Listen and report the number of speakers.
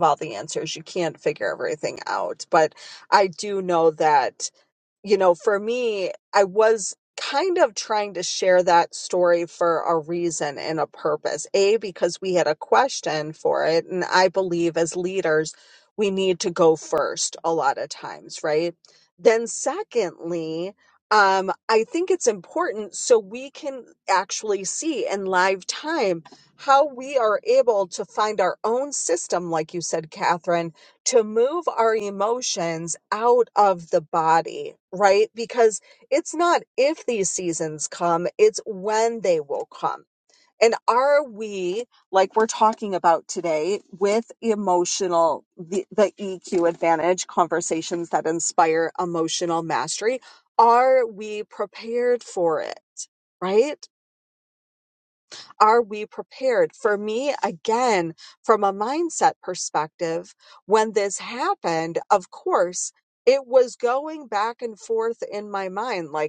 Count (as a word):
one